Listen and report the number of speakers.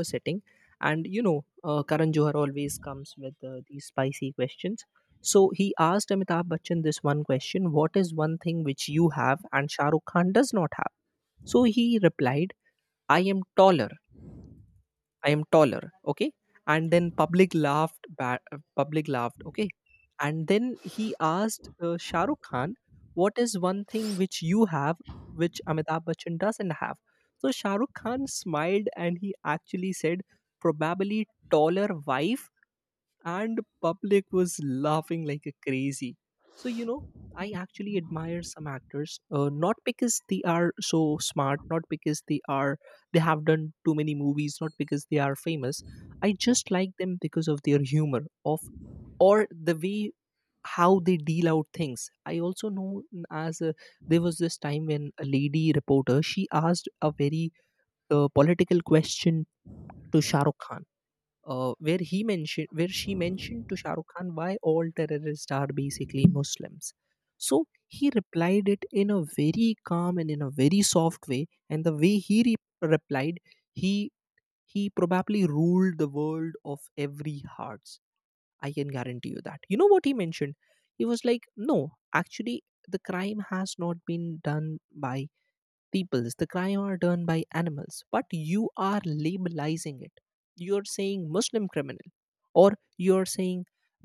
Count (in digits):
1